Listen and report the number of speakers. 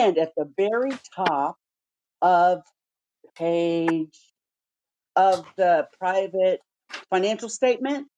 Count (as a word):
one